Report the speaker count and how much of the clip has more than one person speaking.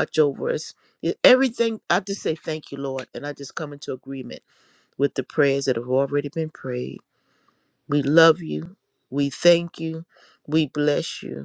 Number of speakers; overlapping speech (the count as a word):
one, no overlap